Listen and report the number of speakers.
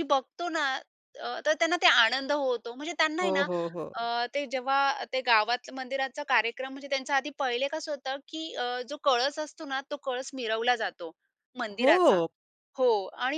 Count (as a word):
two